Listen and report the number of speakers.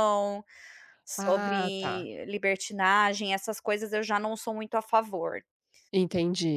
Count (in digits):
2